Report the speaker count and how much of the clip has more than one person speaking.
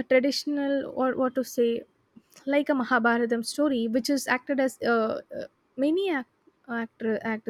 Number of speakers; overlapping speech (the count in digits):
1, no overlap